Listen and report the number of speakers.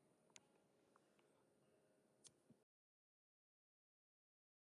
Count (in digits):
0